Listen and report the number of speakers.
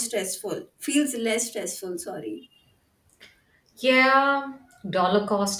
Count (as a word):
two